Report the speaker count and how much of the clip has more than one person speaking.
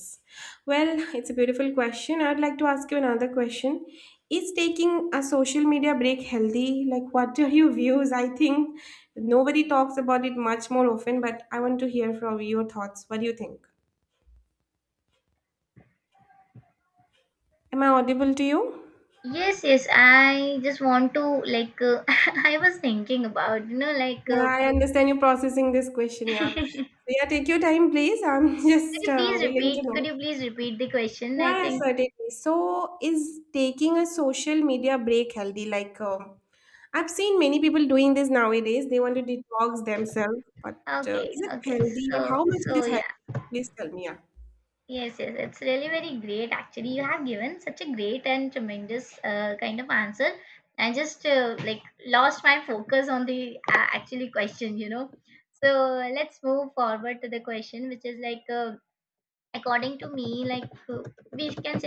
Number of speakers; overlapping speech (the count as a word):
two, about 7%